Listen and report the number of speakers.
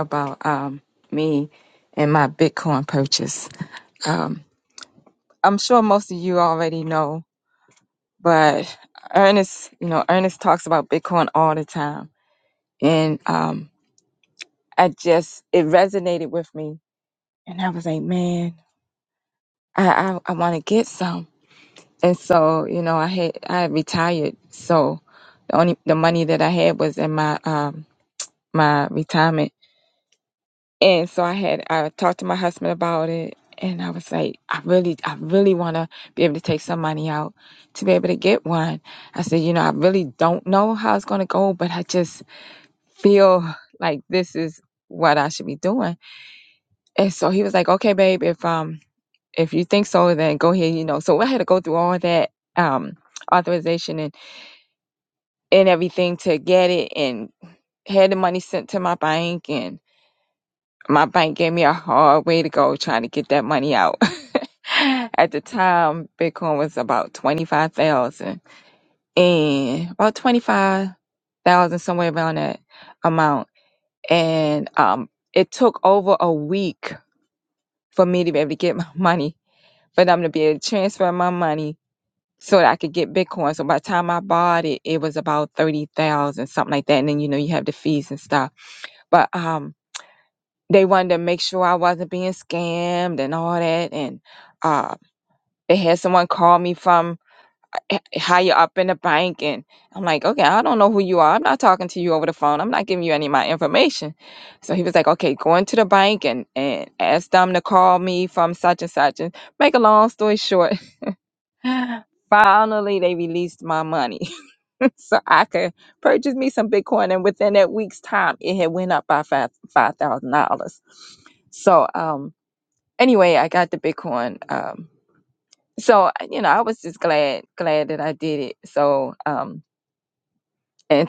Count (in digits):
1